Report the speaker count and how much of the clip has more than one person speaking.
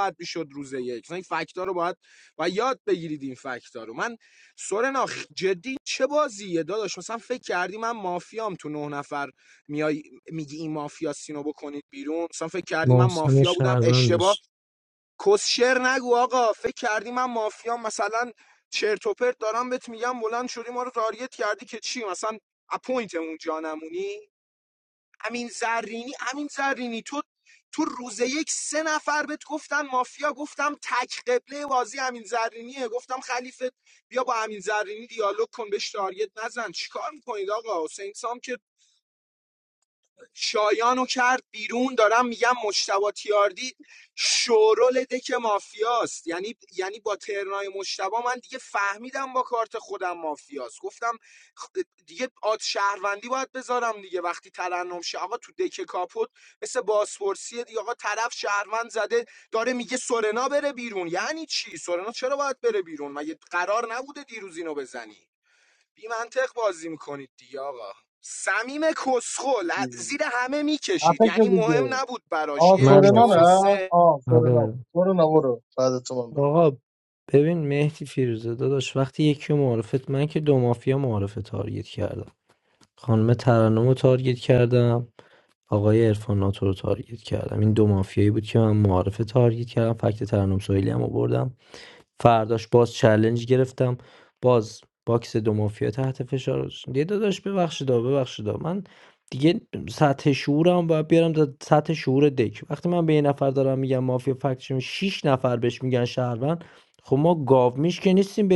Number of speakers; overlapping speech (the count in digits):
3, about 4%